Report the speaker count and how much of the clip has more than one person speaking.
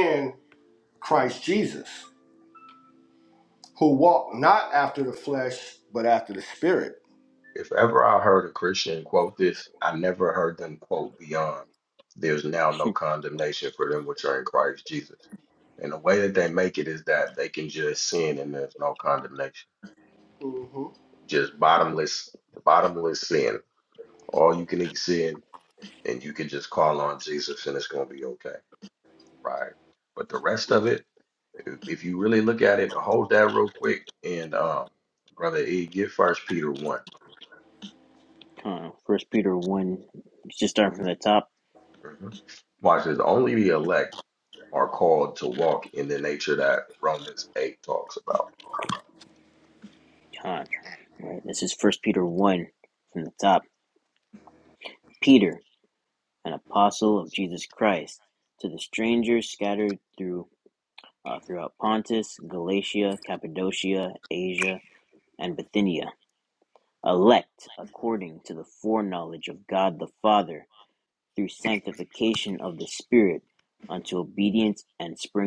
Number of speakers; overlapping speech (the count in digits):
3, no overlap